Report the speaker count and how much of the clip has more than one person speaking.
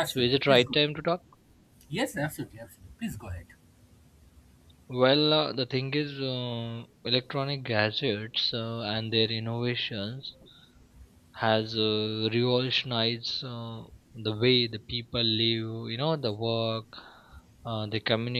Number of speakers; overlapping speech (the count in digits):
2, about 4%